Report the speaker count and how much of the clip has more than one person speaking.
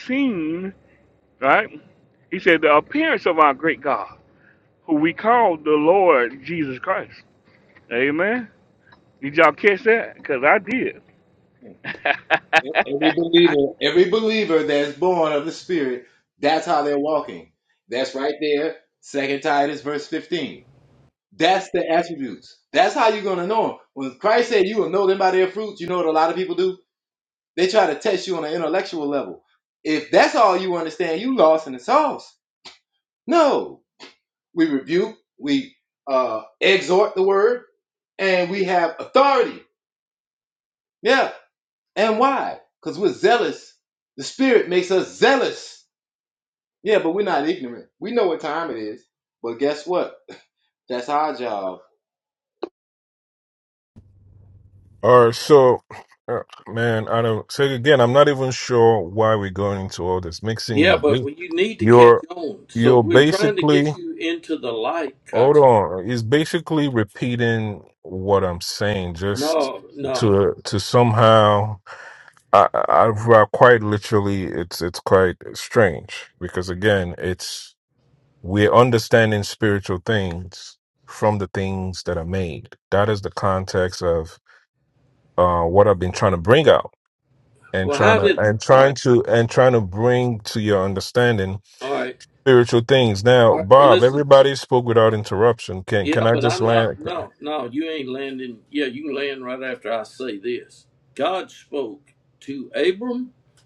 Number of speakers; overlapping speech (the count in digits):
4, about 6%